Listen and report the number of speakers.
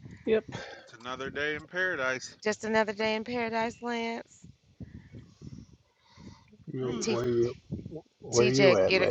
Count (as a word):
three